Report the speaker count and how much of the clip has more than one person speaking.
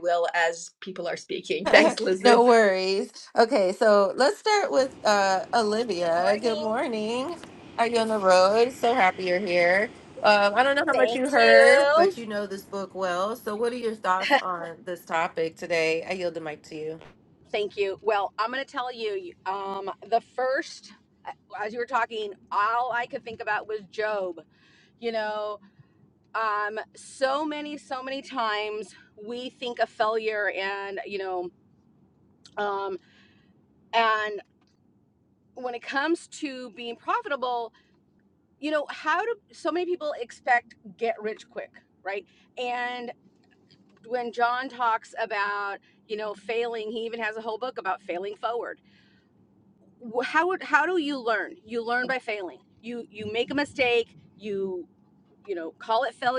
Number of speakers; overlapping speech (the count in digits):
3, about 4%